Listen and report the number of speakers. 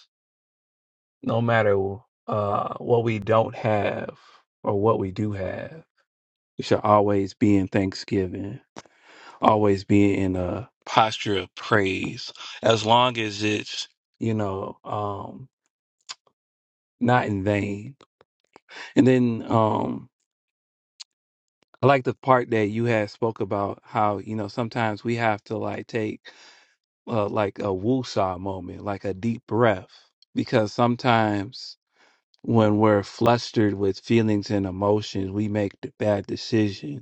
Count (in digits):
1